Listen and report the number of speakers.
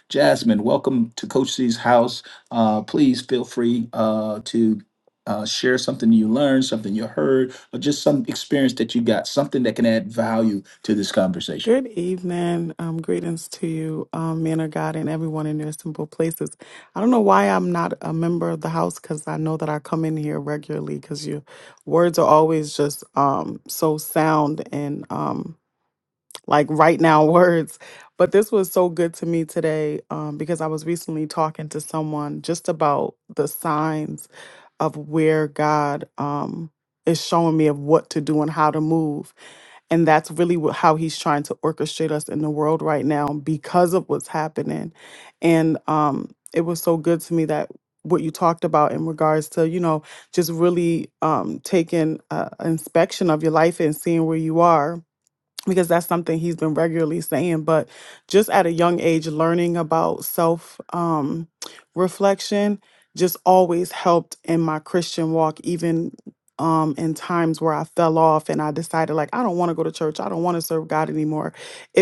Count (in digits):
2